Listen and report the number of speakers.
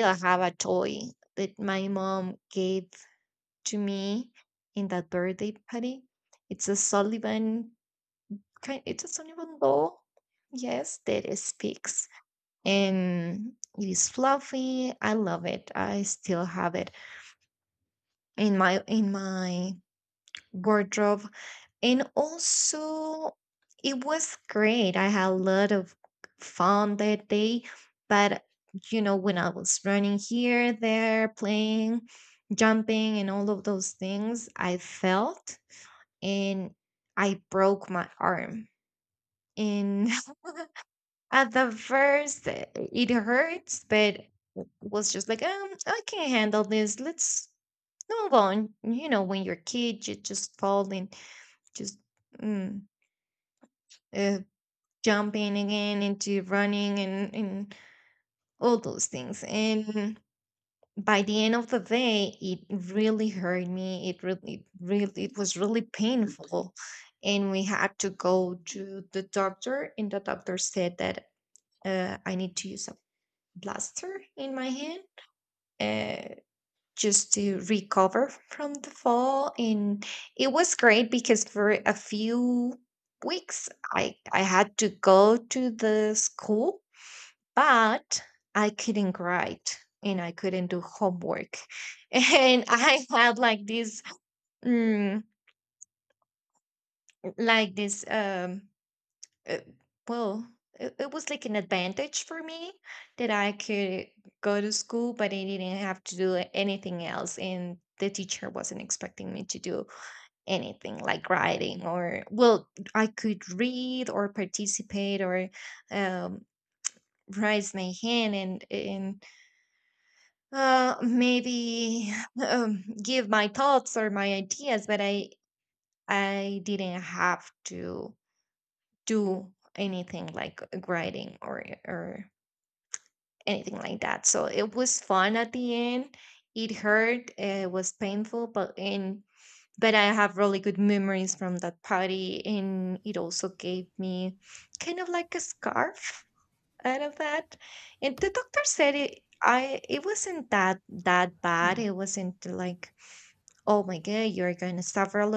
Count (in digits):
1